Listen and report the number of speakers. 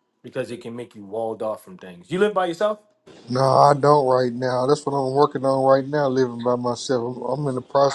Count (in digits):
2